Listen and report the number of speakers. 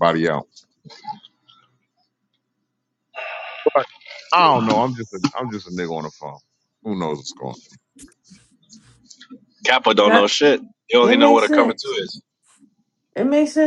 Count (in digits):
3